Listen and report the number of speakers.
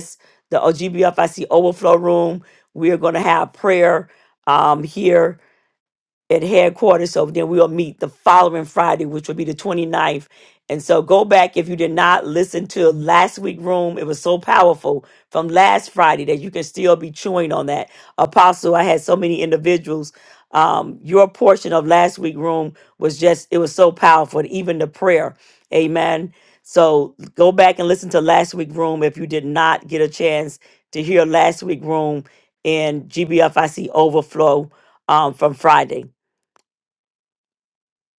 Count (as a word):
one